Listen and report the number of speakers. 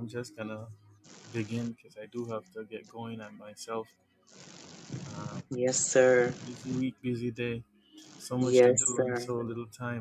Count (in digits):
2